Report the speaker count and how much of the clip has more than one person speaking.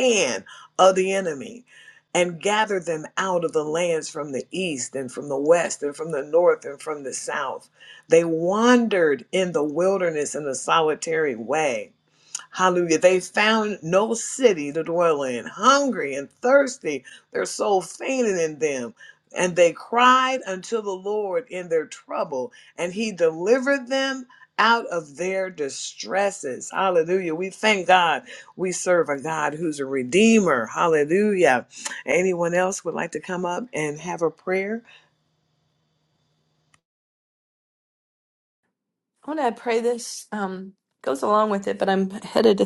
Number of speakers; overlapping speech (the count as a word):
two, no overlap